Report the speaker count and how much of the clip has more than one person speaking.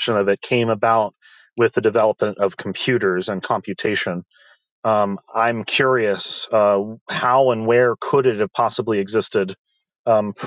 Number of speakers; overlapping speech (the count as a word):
one, no overlap